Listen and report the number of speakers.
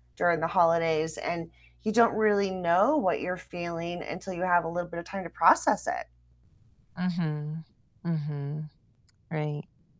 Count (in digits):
2